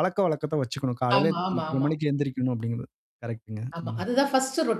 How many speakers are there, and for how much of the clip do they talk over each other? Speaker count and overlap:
two, about 22%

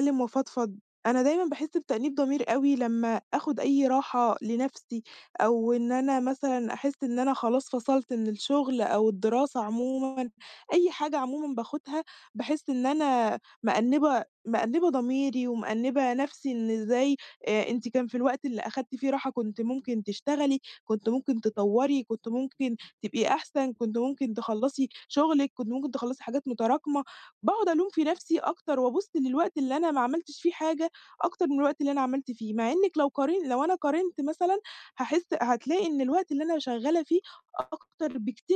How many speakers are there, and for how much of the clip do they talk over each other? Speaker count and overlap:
one, no overlap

